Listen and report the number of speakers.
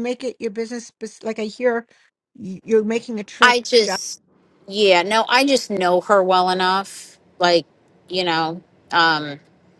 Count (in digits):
2